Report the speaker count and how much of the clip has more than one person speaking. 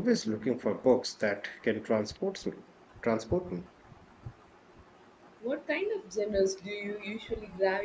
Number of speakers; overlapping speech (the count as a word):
two, no overlap